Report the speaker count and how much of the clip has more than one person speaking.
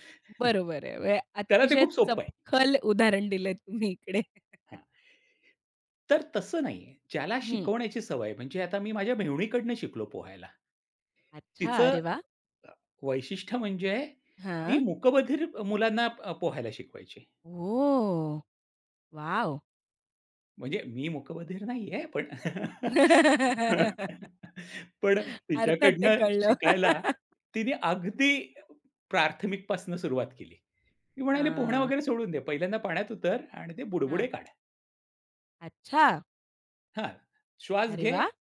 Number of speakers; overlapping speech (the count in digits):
2, about 9%